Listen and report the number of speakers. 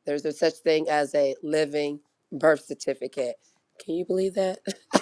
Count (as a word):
one